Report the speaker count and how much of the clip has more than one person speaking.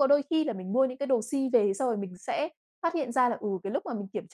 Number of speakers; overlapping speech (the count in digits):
1, no overlap